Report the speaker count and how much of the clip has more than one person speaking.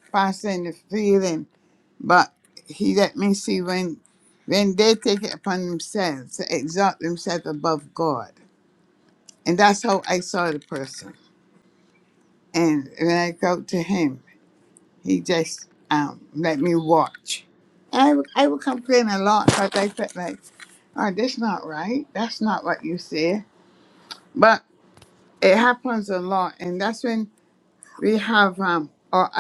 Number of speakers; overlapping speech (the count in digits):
1, no overlap